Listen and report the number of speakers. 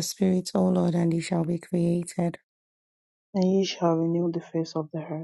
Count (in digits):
2